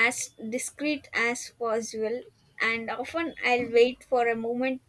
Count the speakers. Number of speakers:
one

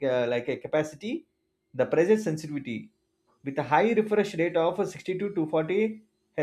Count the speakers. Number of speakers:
one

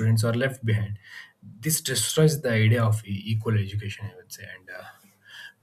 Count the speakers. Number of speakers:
one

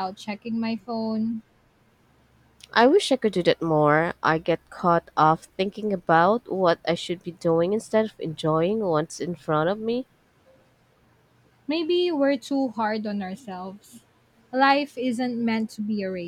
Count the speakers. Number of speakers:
two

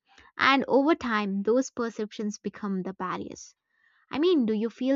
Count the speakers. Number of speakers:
one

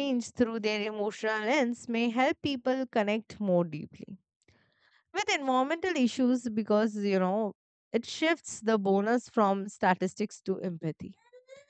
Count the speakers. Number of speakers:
one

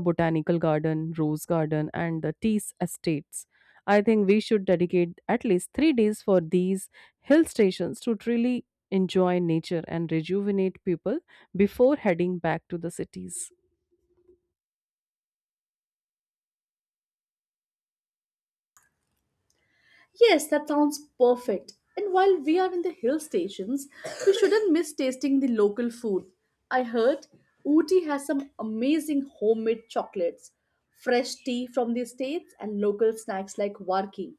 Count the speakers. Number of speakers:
two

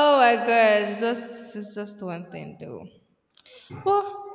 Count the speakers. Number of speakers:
one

